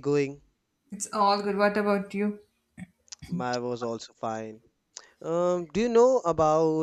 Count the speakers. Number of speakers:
two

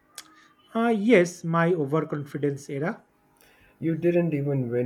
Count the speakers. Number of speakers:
two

